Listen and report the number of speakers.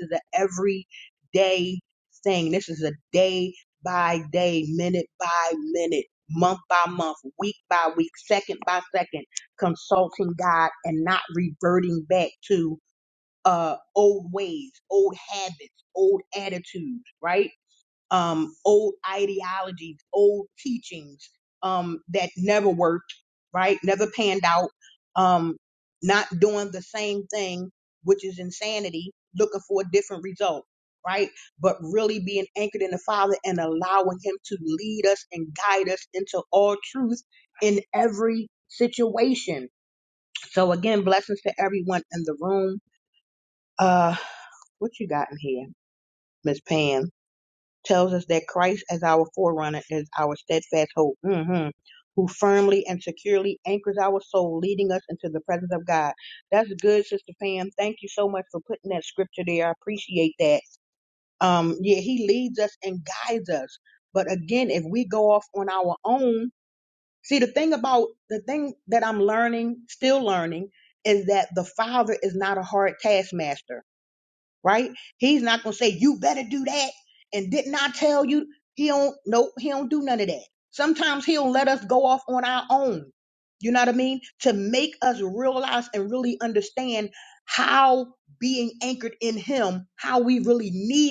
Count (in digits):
1